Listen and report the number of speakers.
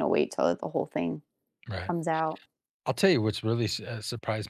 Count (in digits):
2